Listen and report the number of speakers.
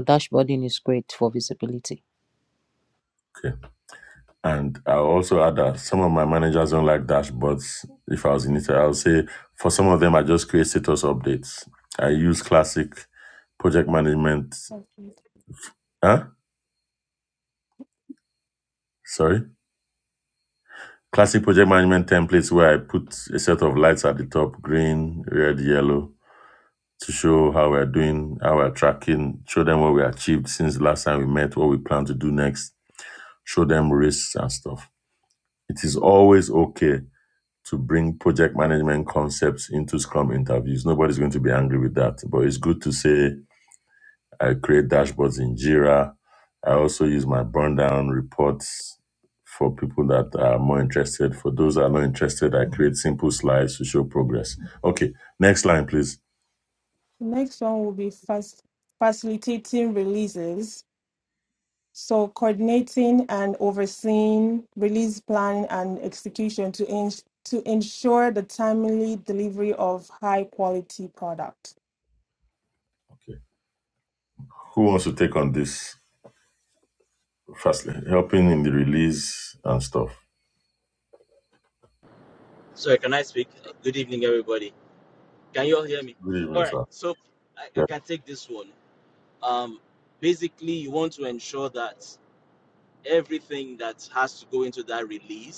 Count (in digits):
4